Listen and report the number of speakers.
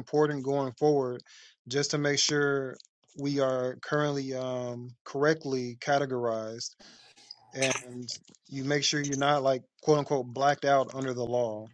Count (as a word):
one